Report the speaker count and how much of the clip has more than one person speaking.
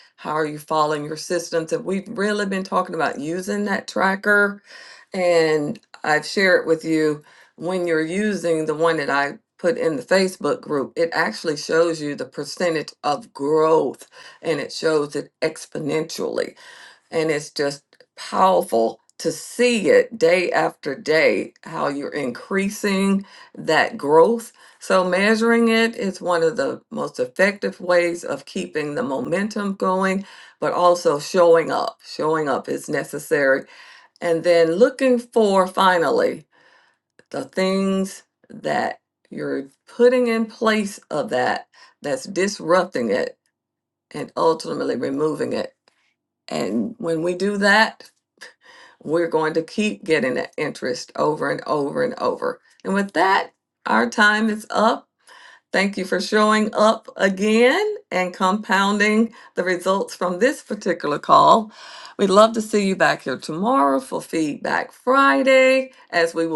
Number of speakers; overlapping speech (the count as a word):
one, no overlap